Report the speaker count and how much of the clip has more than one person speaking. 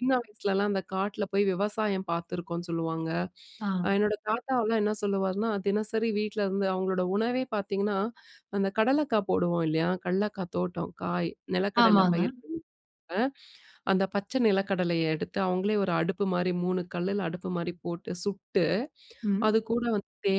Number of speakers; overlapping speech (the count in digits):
2, about 3%